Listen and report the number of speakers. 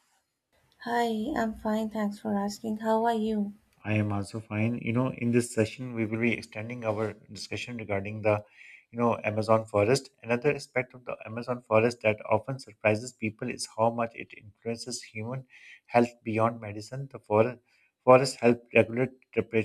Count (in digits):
2